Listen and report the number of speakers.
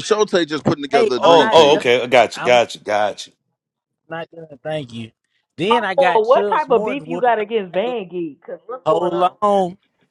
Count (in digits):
4